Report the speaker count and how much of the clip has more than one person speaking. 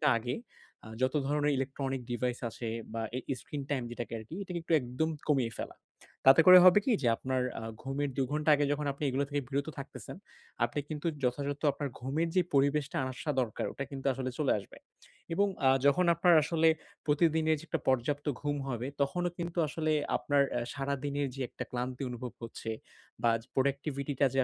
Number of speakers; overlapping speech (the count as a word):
one, no overlap